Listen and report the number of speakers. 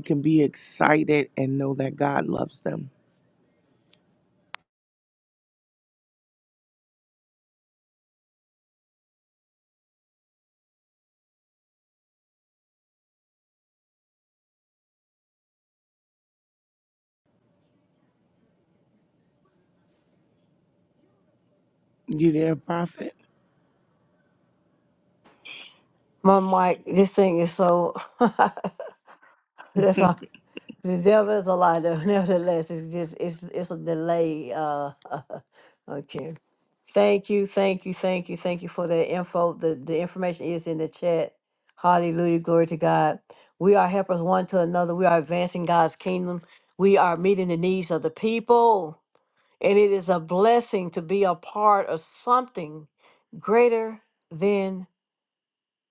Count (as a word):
two